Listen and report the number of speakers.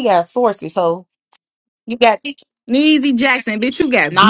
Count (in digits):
2